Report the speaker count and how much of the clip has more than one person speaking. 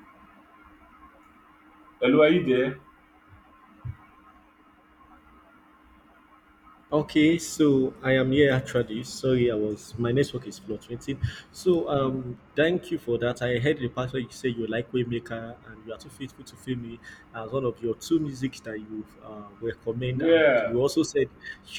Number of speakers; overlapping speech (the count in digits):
2, about 4%